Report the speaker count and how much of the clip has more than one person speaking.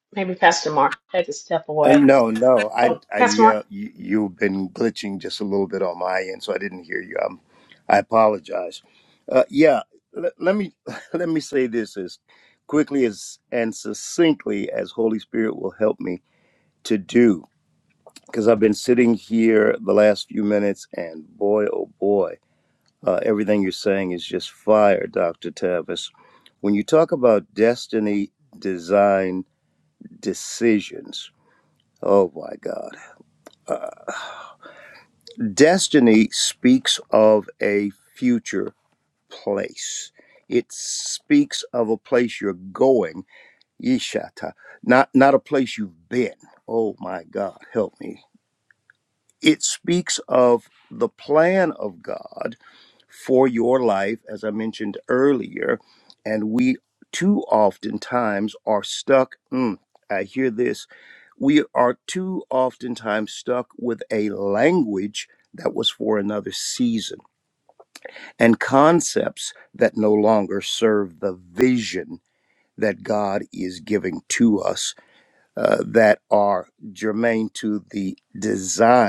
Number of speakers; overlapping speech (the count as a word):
two, about 1%